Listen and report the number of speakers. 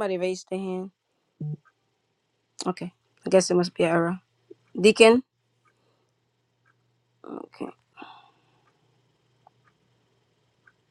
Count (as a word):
one